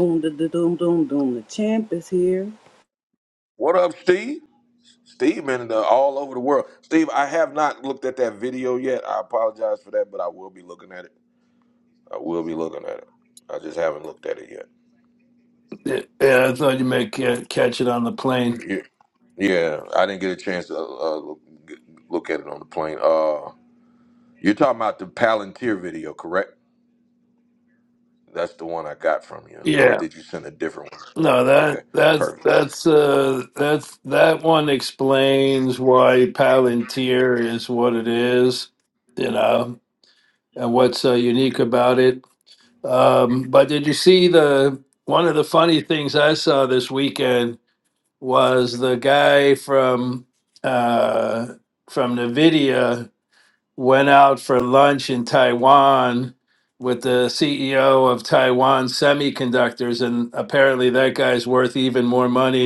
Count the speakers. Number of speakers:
three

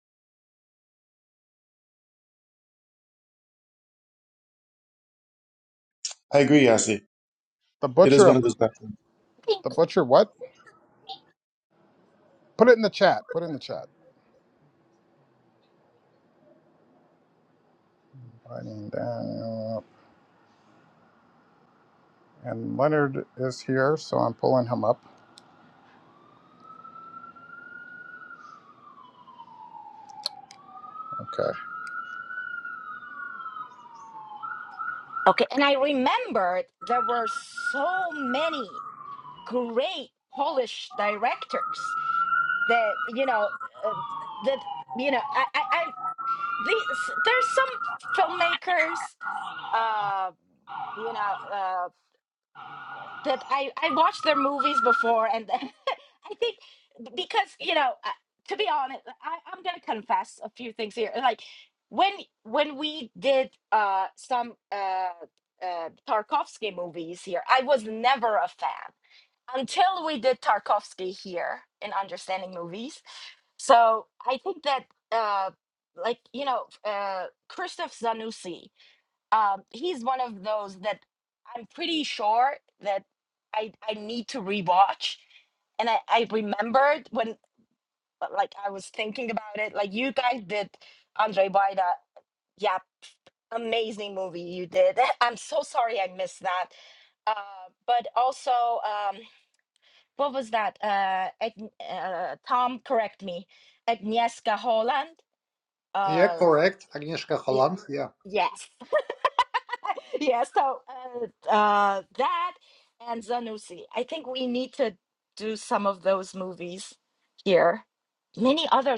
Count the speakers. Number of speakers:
four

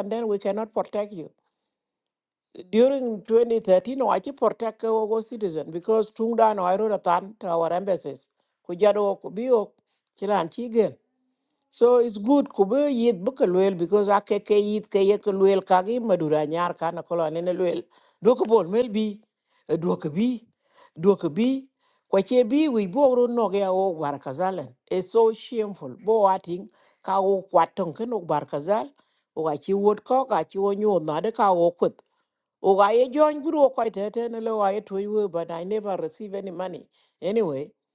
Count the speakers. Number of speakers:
one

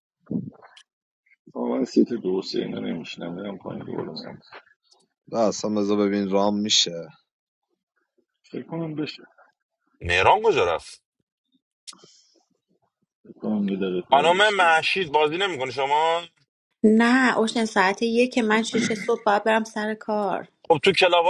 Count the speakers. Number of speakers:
four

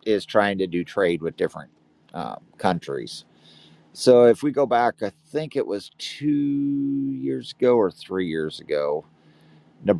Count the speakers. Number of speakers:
one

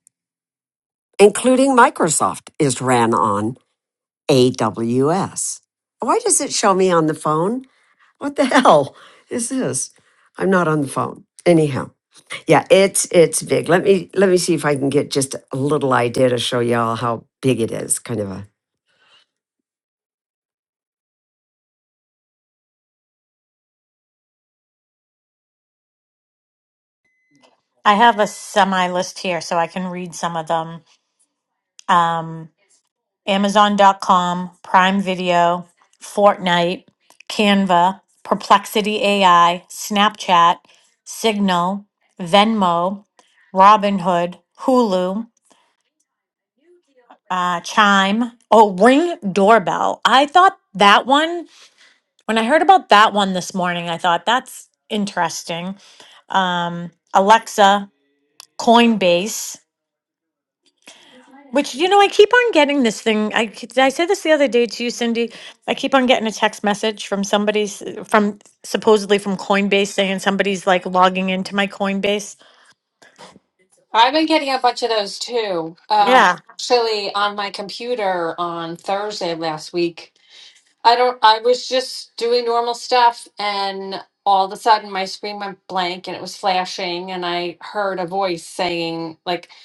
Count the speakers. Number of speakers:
three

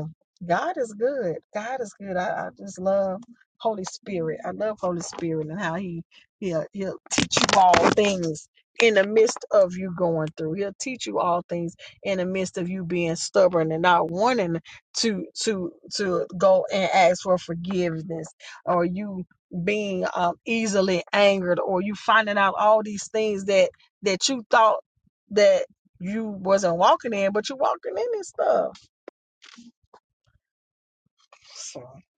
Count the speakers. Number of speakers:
one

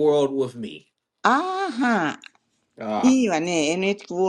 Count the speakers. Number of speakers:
two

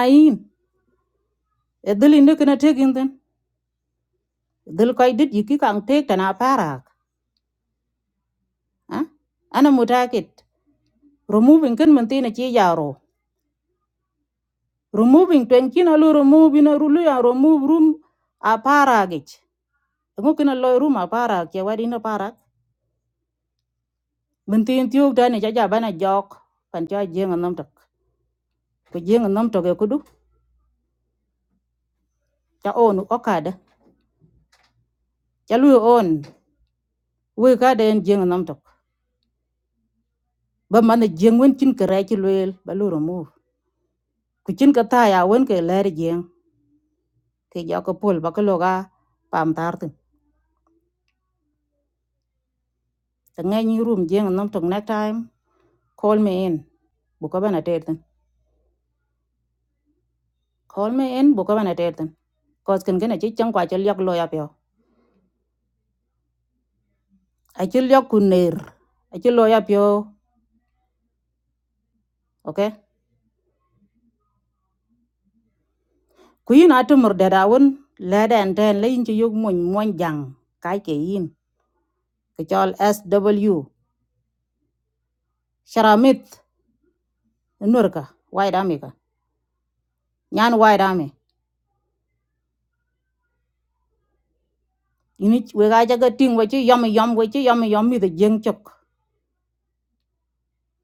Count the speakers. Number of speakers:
one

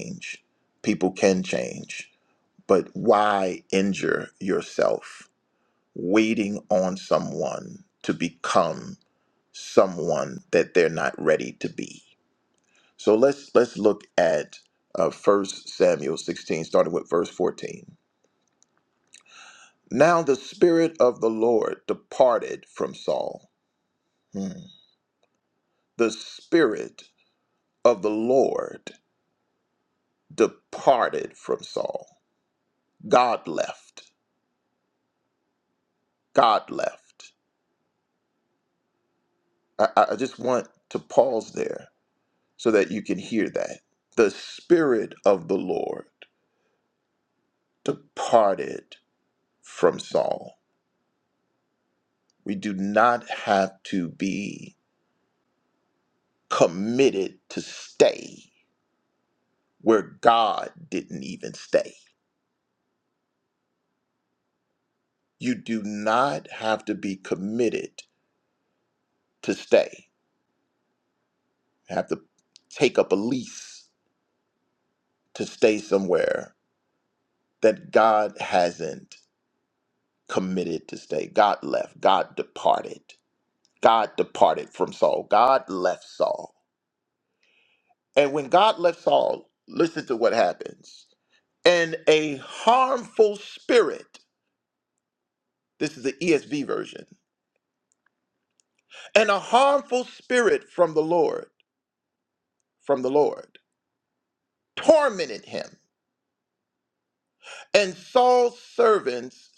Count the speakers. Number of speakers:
one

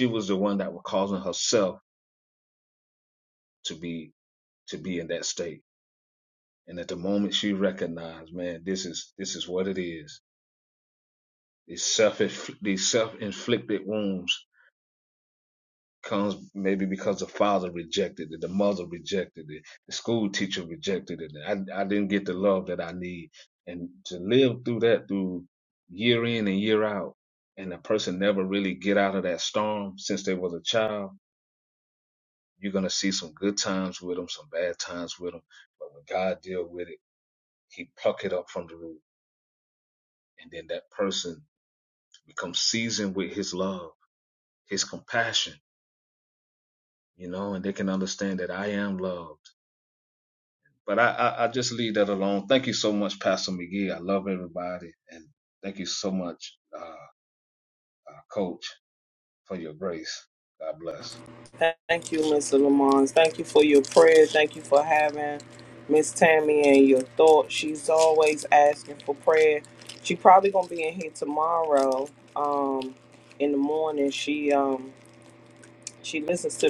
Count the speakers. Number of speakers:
two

